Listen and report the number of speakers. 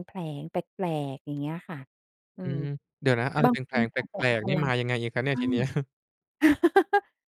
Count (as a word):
two